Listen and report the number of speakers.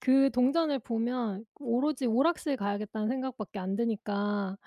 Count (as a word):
one